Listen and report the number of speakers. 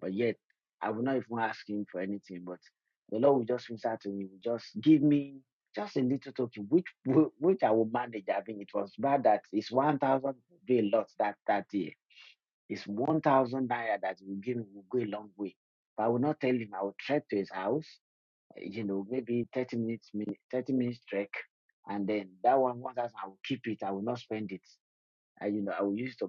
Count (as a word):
one